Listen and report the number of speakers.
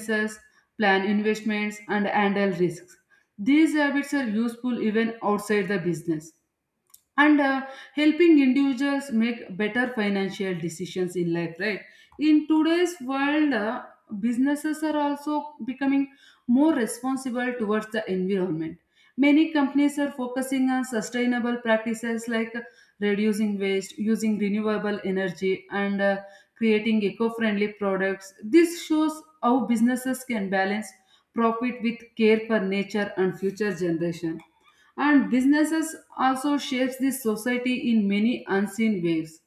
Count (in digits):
1